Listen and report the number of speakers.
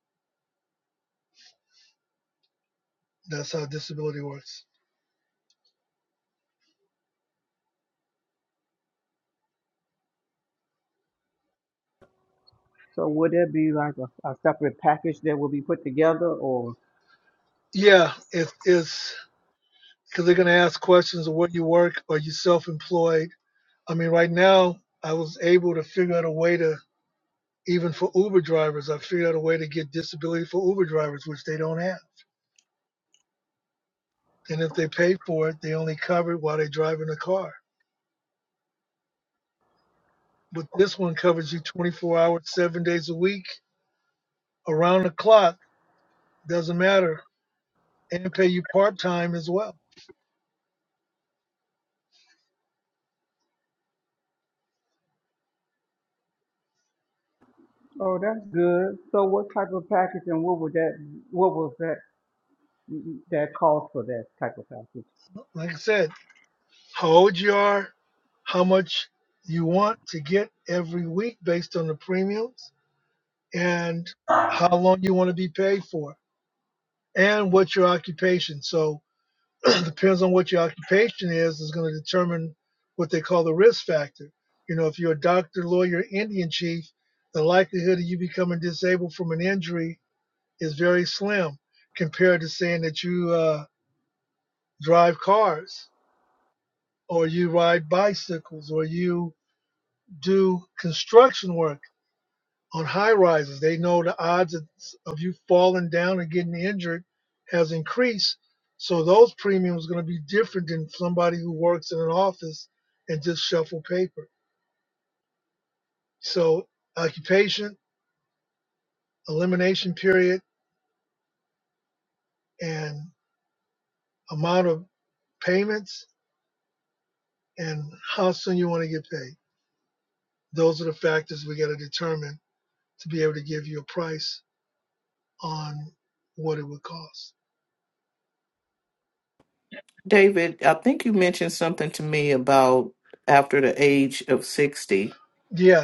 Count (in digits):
3